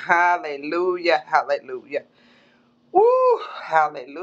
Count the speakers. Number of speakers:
1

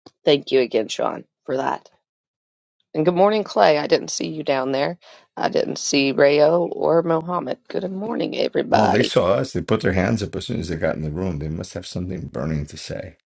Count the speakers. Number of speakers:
2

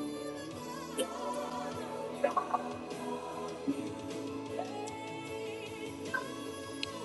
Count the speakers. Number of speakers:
0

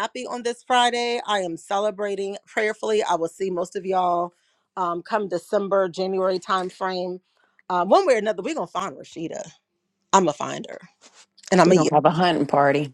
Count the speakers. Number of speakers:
2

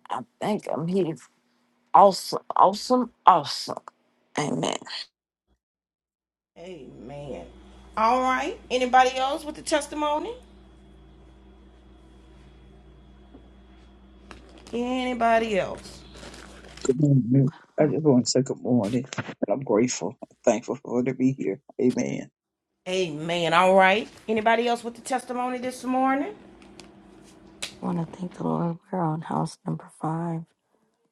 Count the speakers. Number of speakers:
4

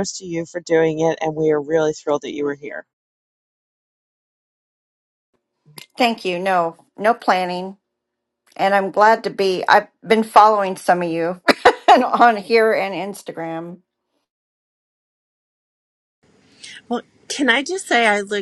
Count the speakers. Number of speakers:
3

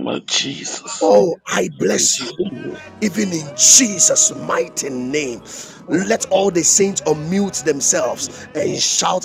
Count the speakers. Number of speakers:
2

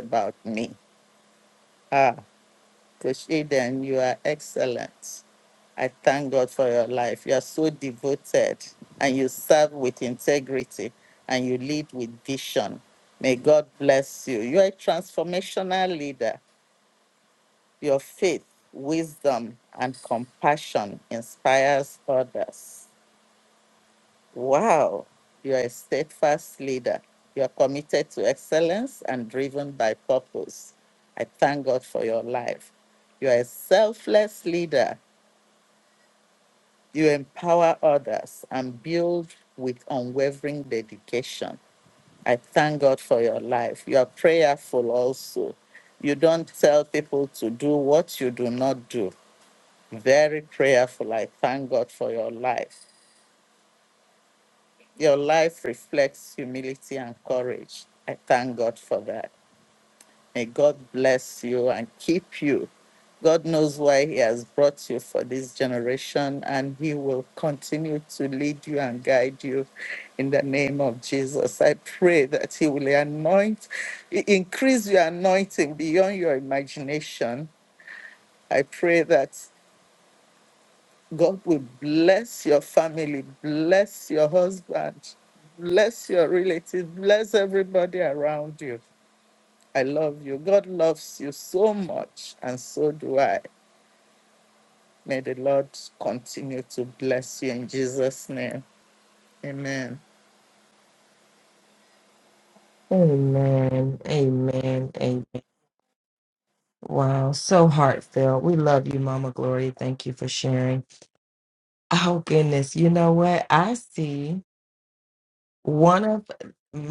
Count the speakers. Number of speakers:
2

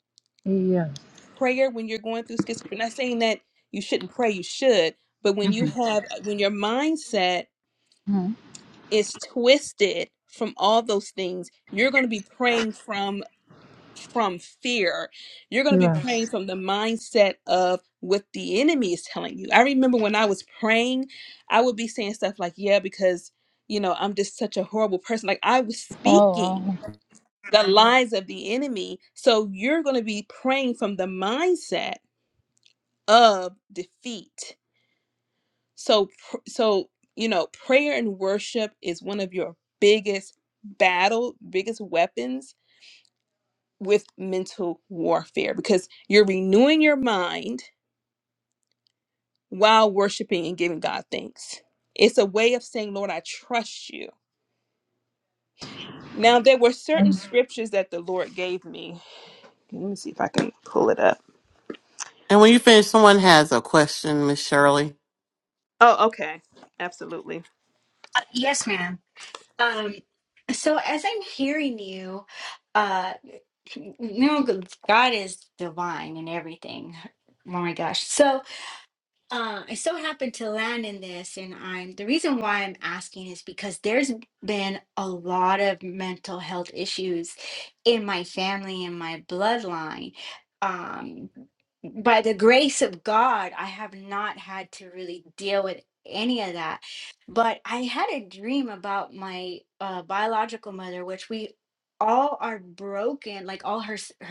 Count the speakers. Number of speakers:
4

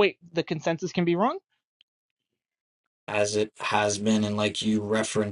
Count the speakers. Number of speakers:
2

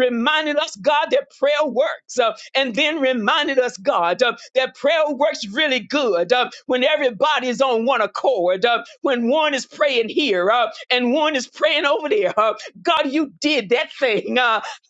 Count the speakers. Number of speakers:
1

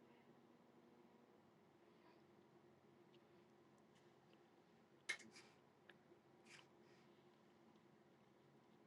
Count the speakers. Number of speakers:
0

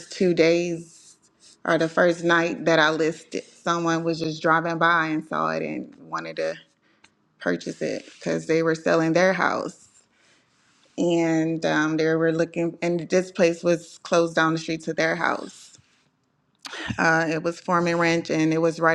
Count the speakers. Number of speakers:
1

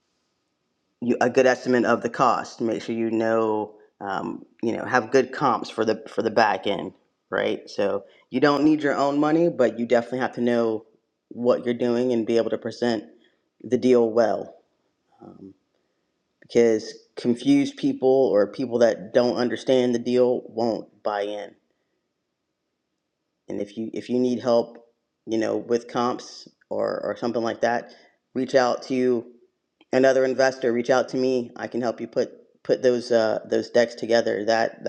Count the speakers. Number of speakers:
1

